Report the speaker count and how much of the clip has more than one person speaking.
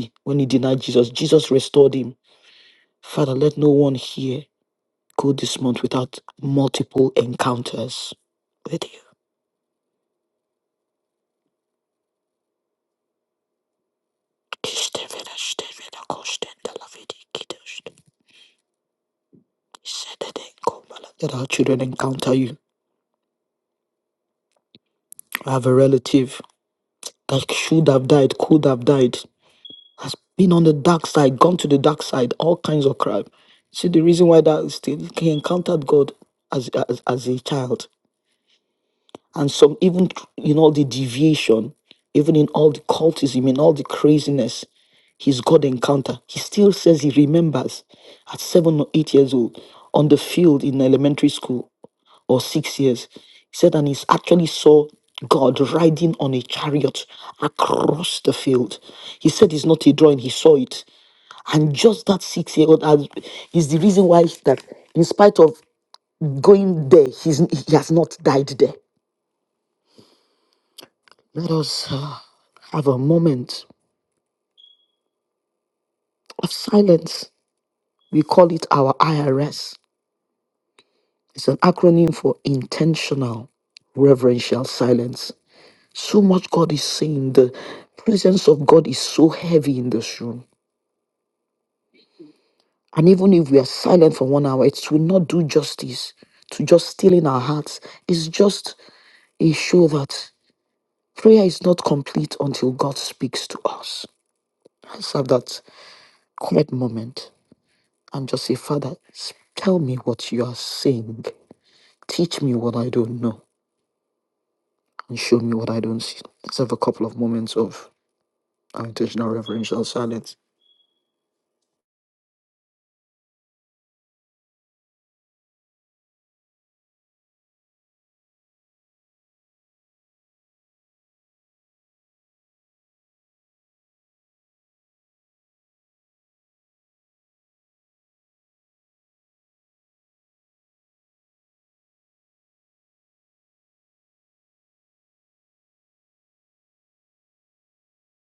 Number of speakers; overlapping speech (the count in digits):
1, no overlap